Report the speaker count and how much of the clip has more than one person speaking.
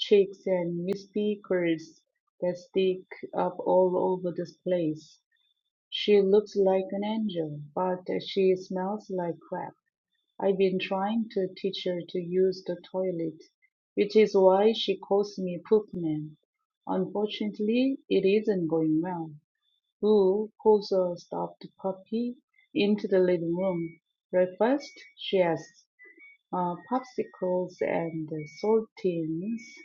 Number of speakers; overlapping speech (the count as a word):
one, no overlap